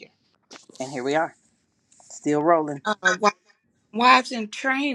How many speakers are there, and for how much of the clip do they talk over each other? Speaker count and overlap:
two, no overlap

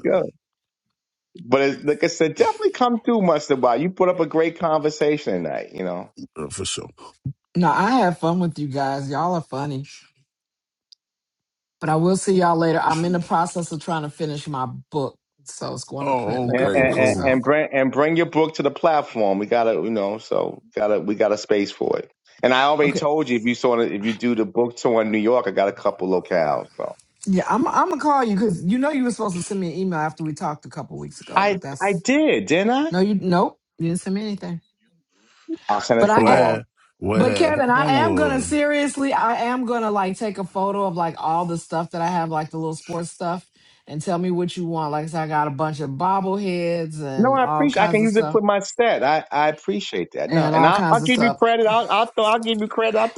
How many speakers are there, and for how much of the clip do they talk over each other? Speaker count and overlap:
three, about 12%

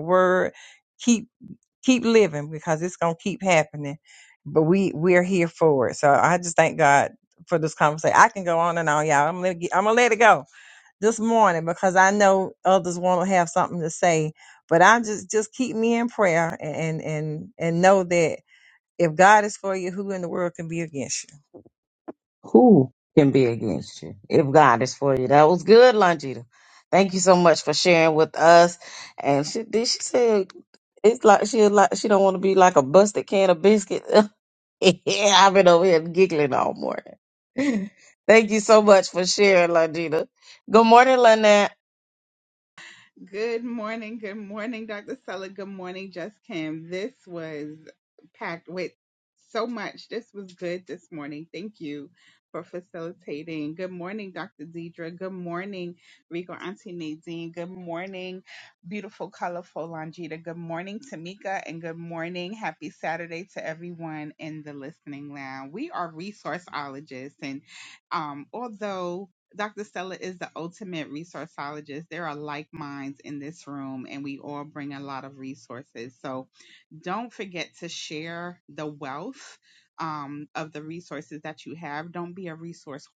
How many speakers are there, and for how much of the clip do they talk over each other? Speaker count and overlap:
three, no overlap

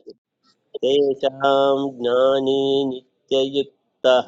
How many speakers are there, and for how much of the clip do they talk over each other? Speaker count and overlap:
one, no overlap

